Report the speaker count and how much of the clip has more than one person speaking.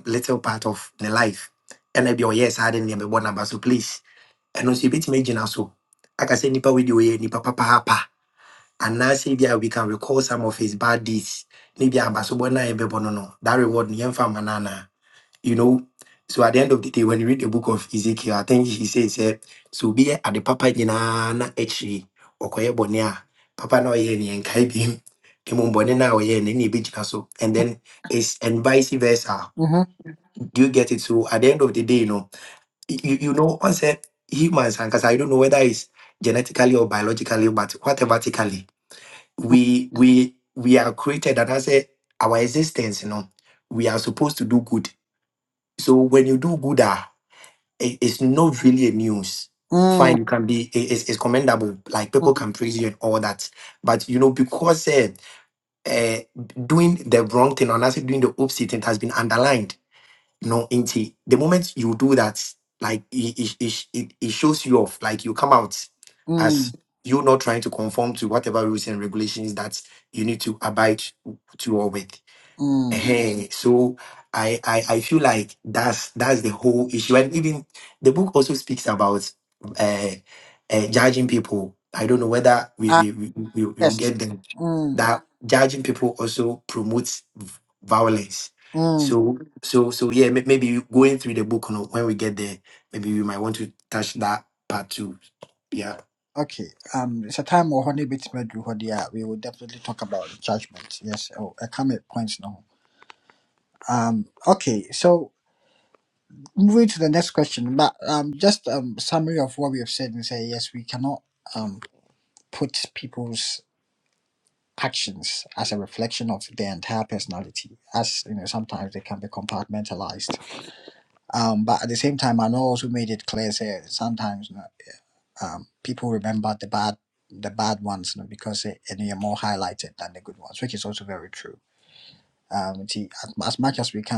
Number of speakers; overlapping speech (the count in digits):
2, about 1%